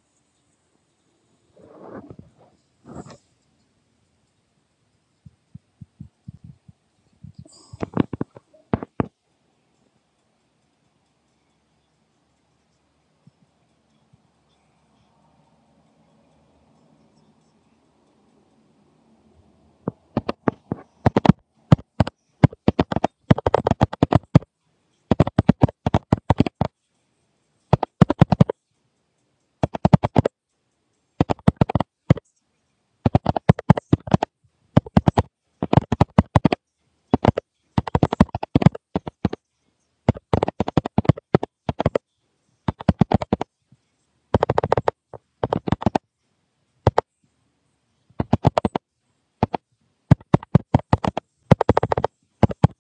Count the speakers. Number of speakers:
0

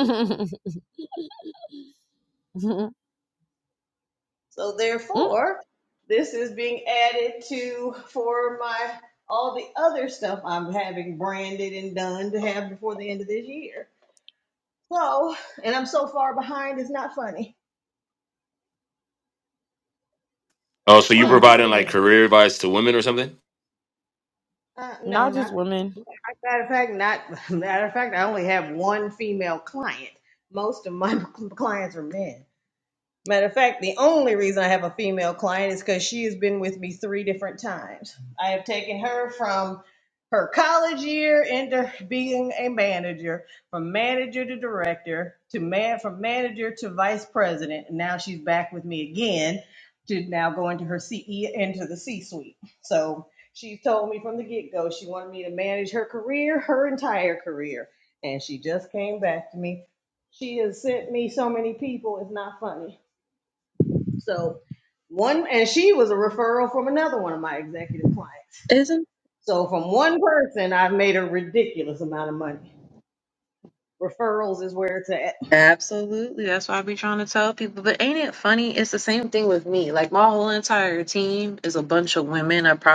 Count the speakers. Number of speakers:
4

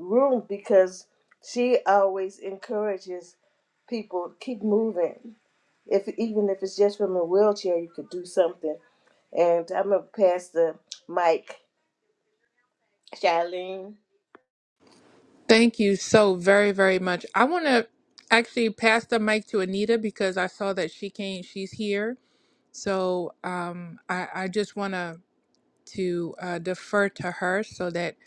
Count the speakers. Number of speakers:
2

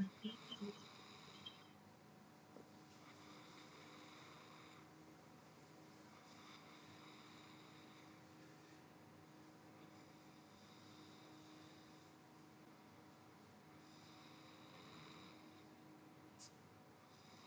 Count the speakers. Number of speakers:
0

